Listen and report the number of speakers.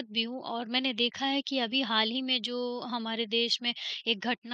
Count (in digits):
1